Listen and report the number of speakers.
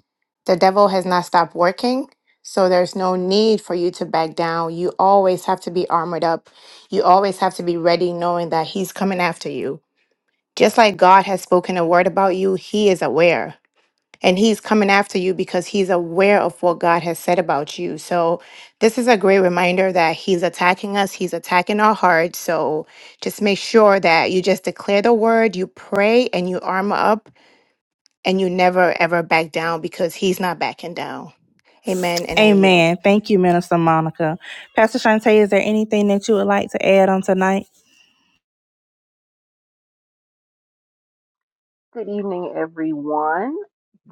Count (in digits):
3